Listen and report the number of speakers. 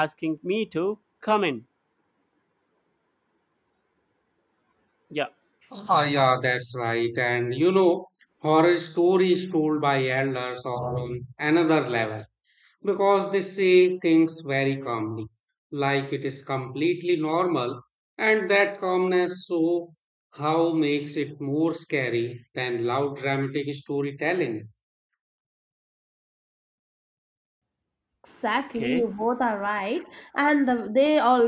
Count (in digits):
3